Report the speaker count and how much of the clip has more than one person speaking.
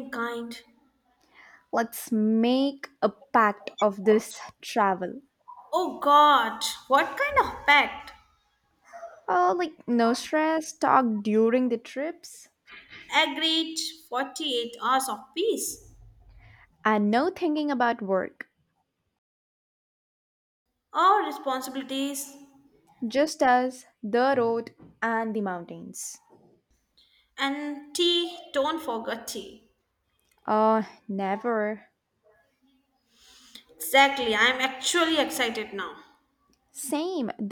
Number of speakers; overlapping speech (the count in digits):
2, no overlap